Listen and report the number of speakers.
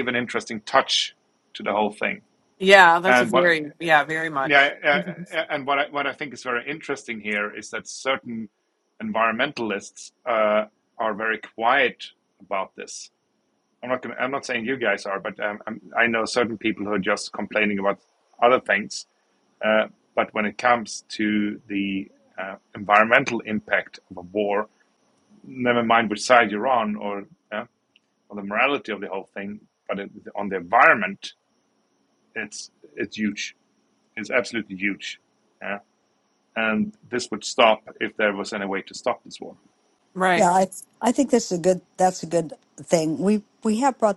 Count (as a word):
three